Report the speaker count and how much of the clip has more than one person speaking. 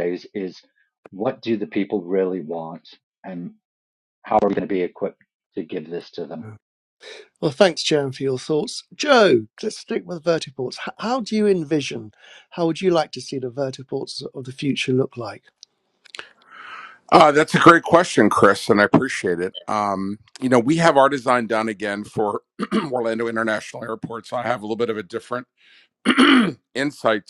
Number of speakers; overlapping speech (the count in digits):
3, no overlap